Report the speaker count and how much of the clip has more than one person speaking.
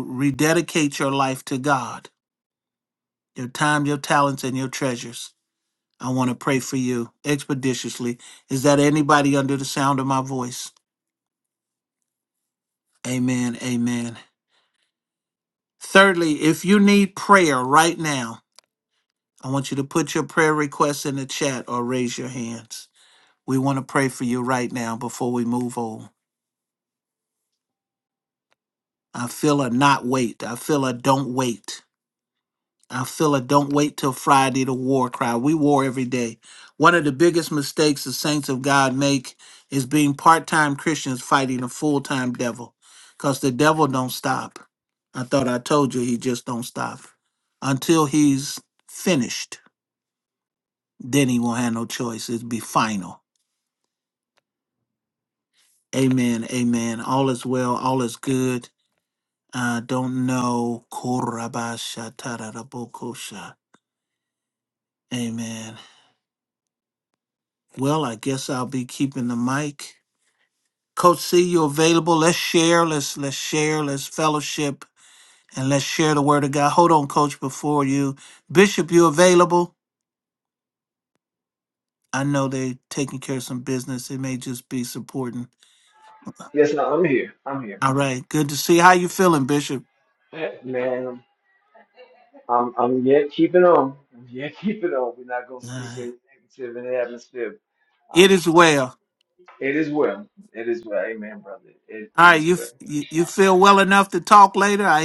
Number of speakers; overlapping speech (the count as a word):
two, about 1%